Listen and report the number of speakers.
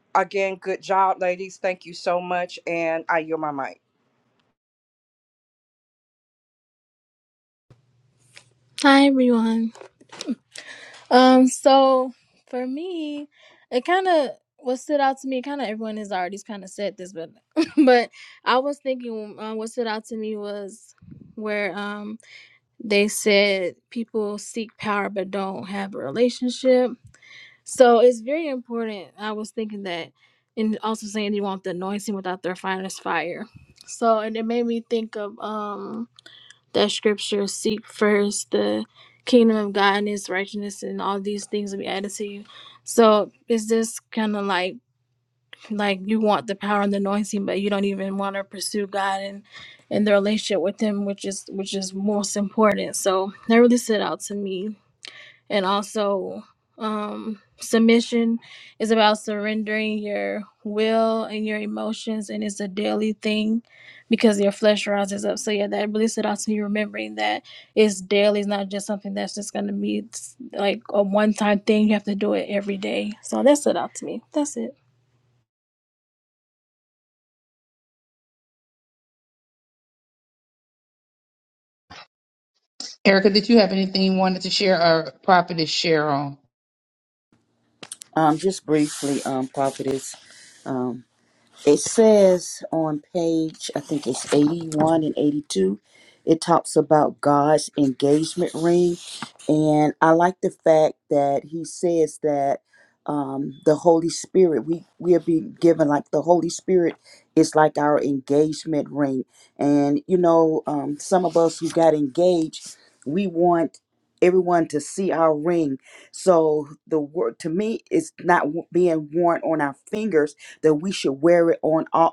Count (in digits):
4